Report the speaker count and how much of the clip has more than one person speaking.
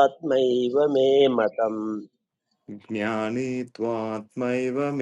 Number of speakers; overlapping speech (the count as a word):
two, no overlap